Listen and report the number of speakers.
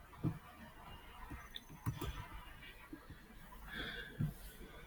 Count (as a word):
zero